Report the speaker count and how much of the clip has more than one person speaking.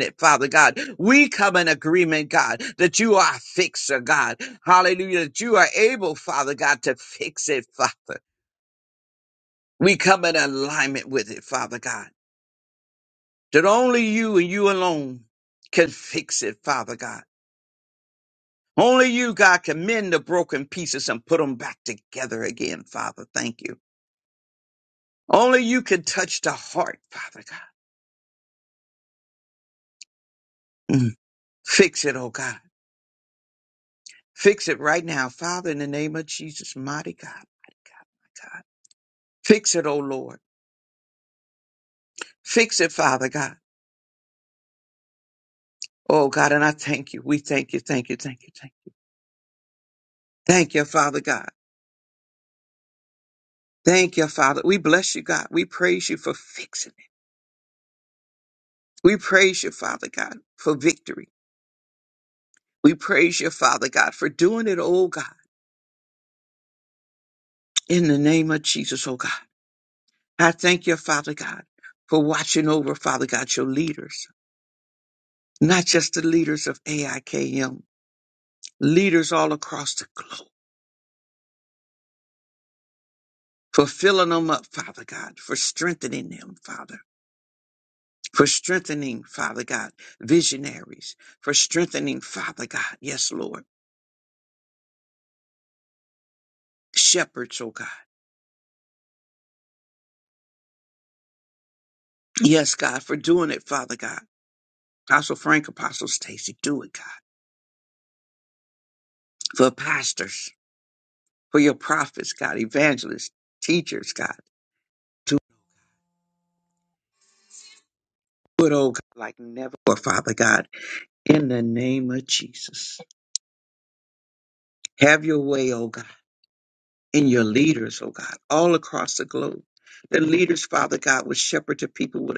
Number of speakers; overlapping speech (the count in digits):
1, no overlap